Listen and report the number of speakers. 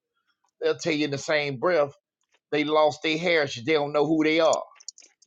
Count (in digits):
1